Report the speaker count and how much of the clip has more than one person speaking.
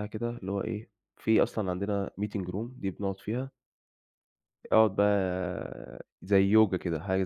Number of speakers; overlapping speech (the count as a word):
one, no overlap